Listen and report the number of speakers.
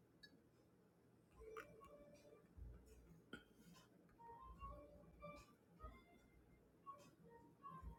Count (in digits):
0